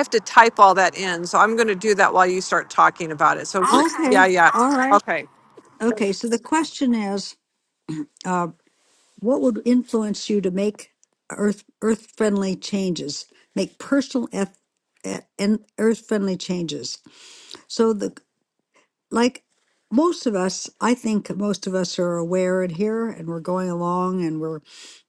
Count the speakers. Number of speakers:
2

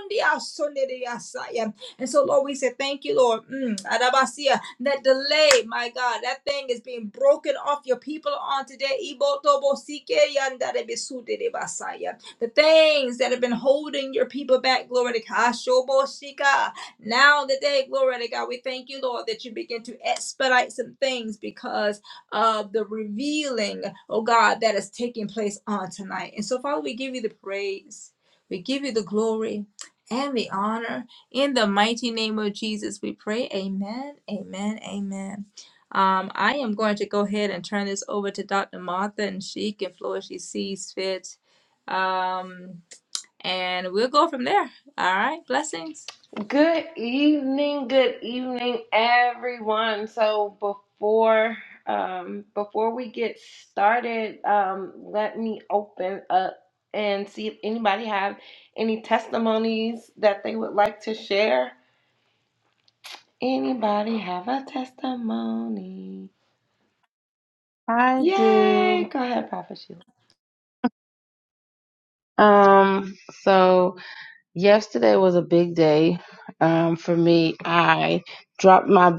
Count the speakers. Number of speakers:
3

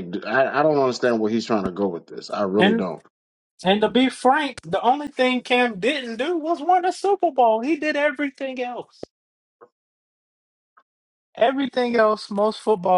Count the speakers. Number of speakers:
2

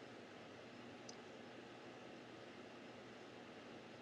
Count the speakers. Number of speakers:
0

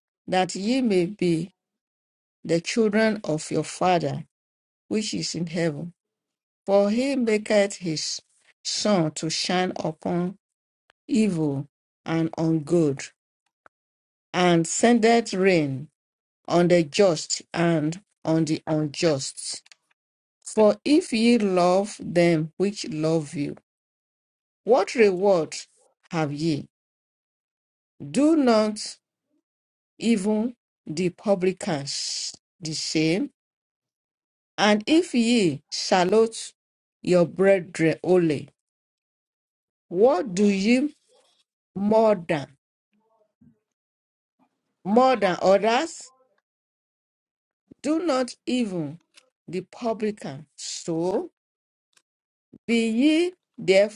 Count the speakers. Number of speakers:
1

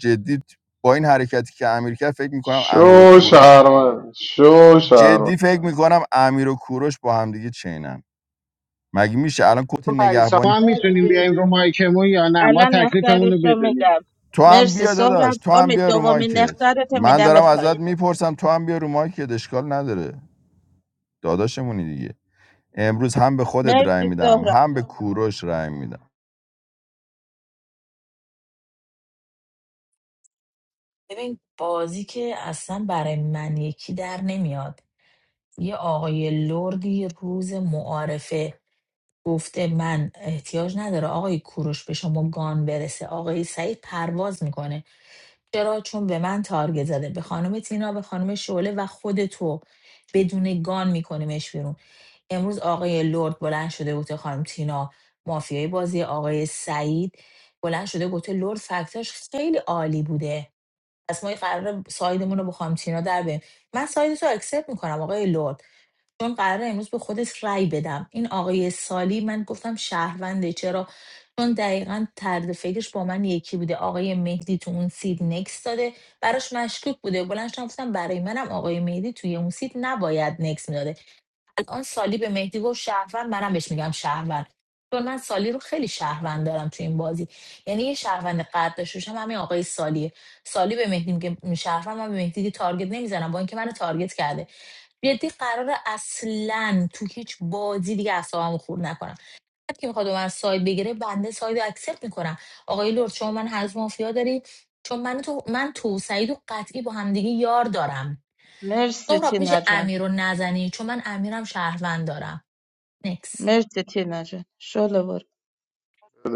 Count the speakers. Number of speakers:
5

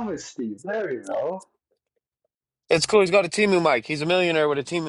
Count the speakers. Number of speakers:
2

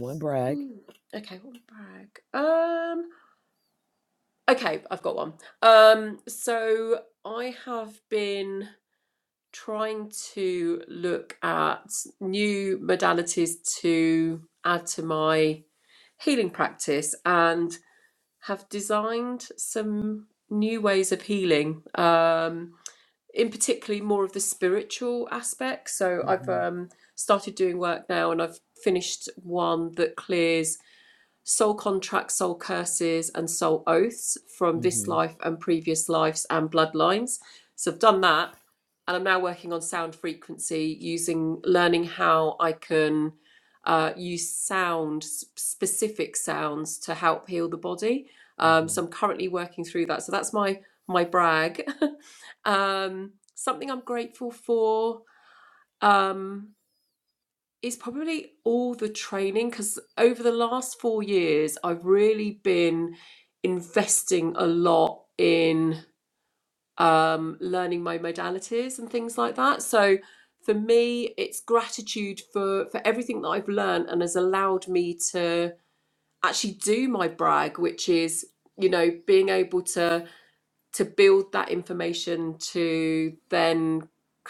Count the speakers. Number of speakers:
2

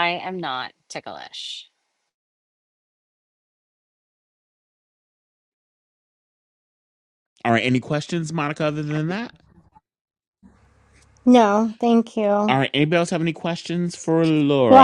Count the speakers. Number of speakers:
3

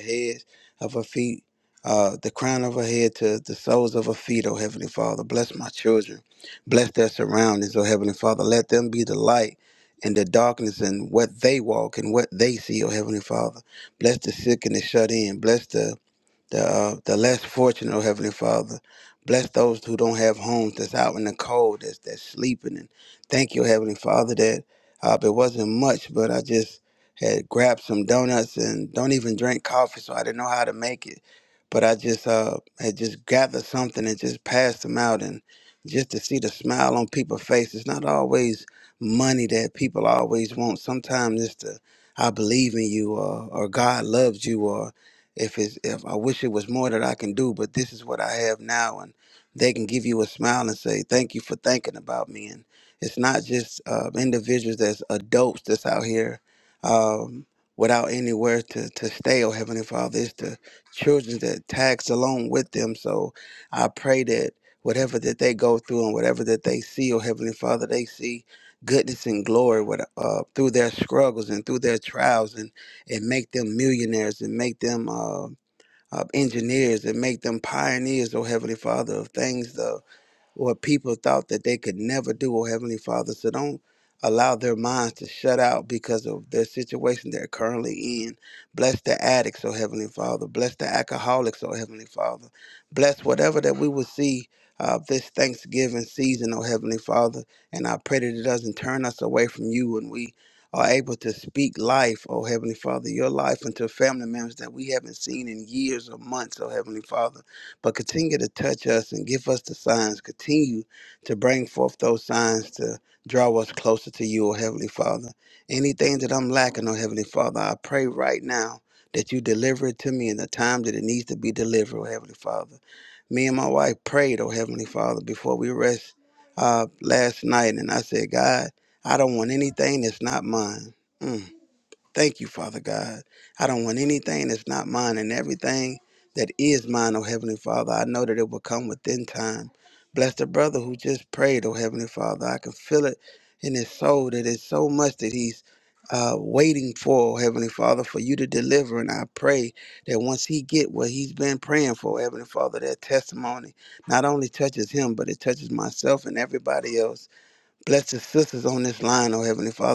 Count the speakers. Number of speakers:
1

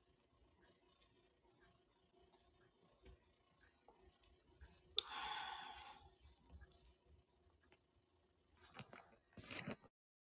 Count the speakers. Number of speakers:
0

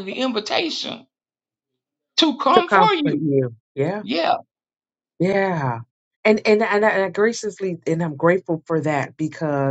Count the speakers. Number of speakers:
2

